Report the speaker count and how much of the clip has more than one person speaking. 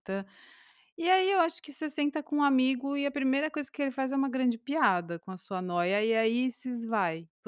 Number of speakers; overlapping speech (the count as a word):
one, no overlap